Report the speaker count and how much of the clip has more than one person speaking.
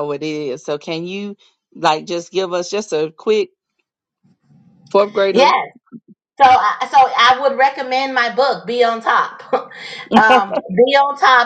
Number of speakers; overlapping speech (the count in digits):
2, about 2%